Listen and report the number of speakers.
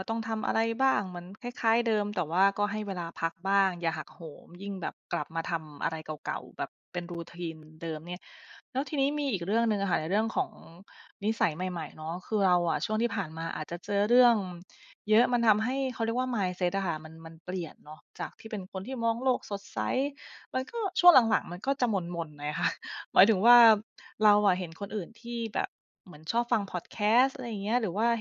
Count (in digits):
1